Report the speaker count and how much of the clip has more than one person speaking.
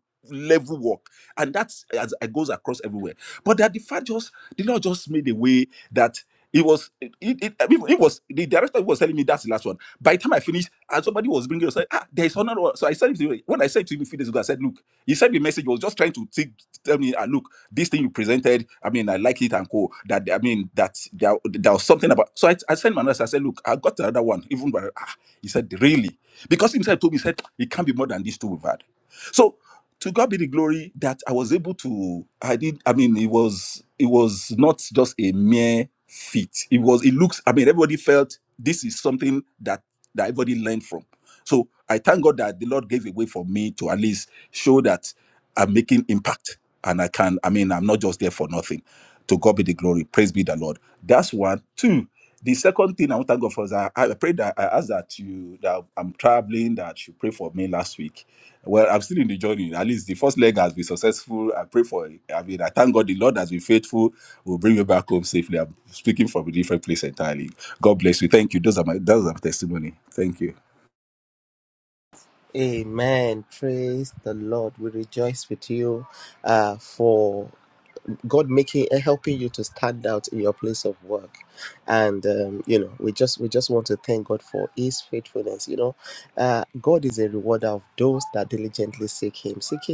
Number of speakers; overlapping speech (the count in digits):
2, no overlap